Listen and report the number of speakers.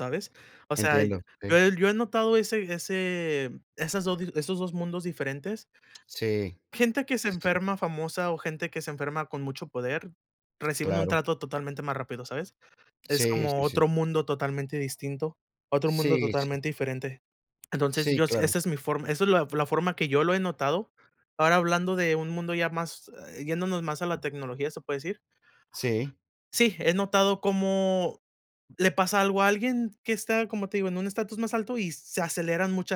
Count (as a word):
two